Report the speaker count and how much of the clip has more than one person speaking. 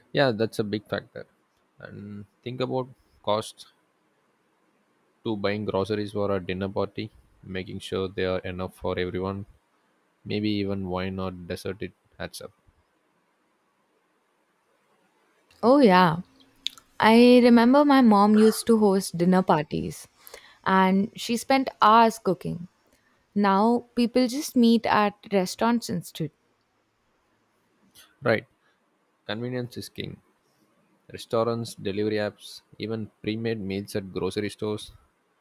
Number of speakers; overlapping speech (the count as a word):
two, no overlap